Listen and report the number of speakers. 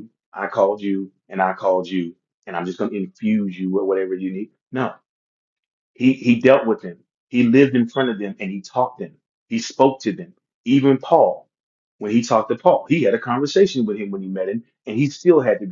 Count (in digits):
1